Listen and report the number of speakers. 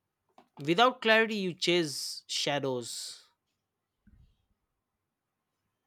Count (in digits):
1